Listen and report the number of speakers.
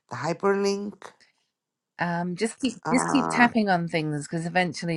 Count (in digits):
2